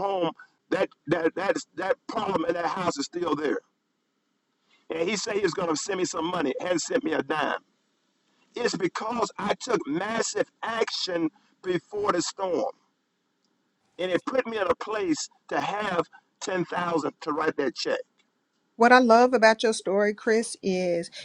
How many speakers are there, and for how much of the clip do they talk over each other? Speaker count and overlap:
2, no overlap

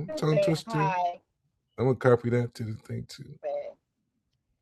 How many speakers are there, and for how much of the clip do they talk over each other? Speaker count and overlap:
2, about 18%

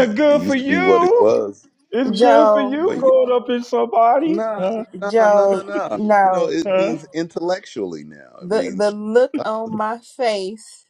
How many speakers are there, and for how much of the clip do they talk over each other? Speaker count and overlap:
3, about 48%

